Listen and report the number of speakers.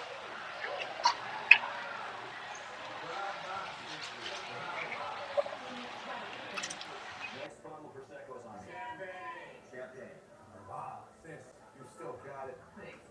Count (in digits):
0